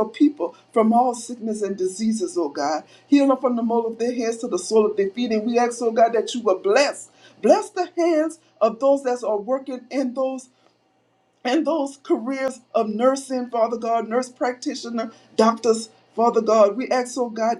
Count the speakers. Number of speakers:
one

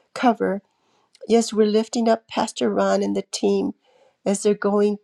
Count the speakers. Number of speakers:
one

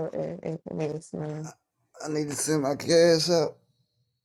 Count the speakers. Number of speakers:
two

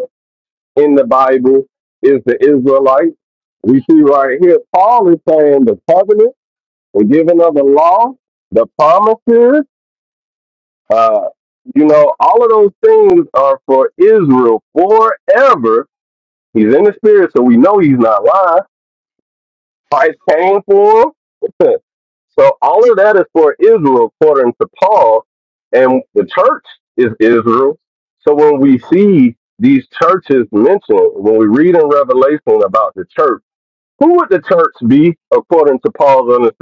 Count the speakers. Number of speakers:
one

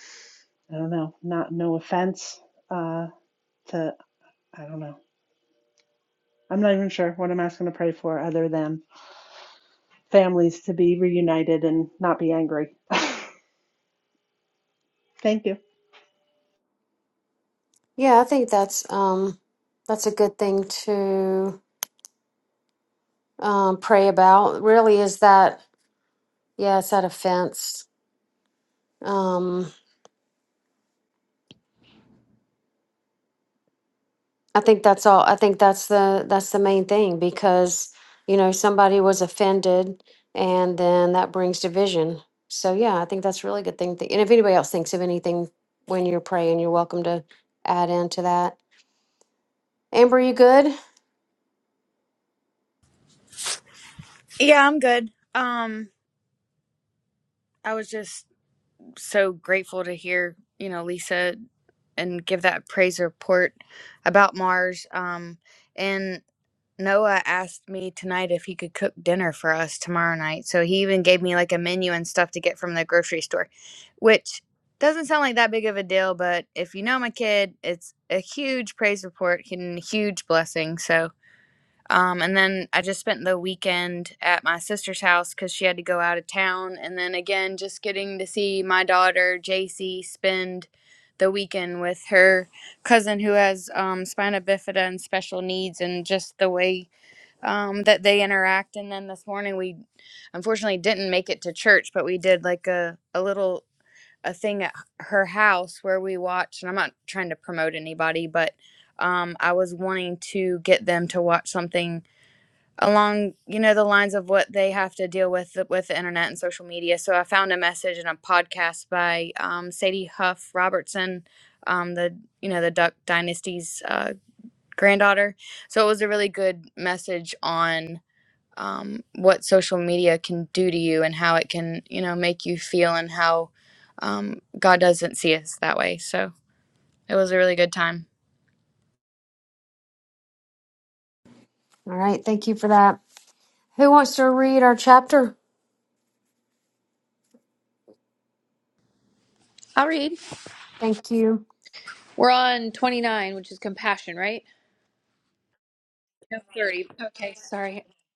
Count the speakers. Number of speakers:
four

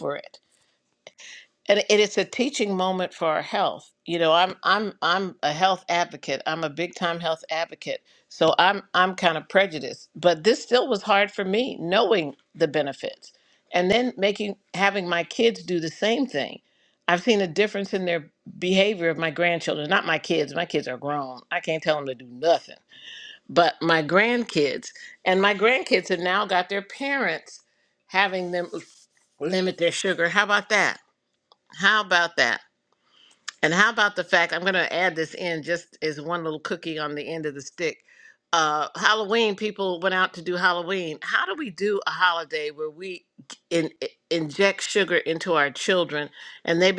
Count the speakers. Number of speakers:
one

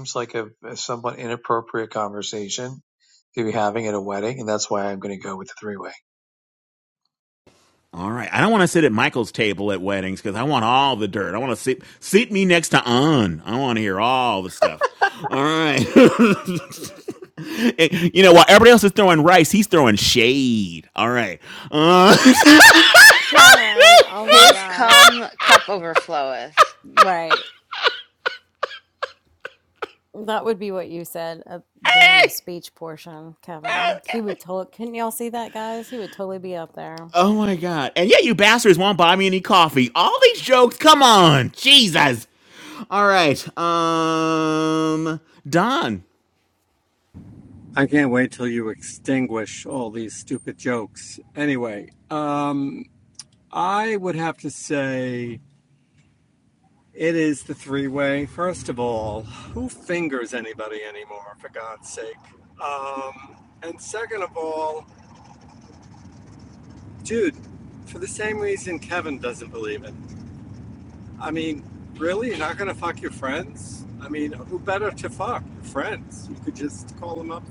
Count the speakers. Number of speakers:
five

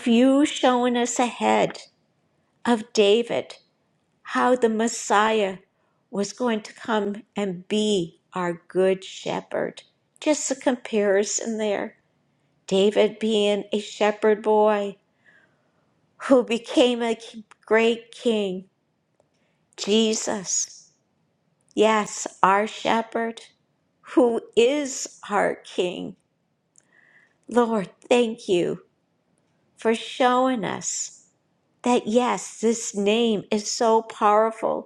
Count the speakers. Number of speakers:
one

